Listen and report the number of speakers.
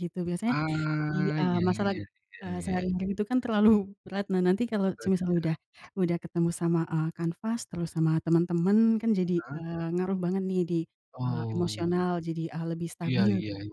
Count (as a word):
two